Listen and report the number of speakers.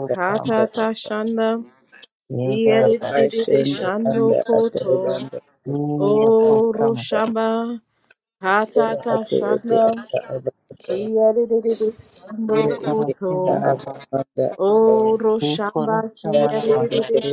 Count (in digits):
3